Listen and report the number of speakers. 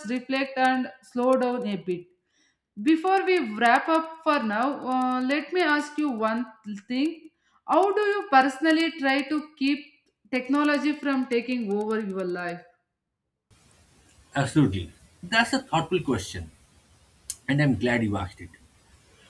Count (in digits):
2